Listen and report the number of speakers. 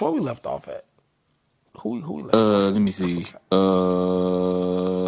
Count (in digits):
2